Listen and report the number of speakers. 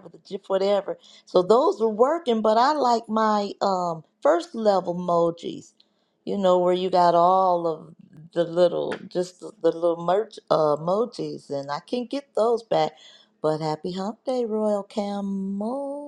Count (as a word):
one